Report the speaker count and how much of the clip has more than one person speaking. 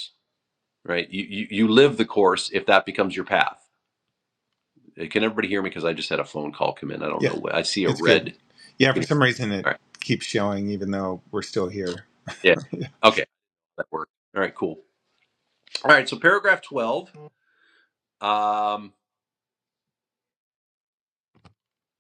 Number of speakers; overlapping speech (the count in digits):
2, about 3%